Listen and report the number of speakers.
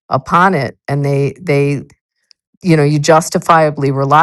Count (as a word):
one